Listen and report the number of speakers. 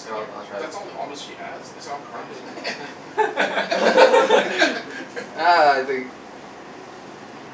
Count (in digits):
2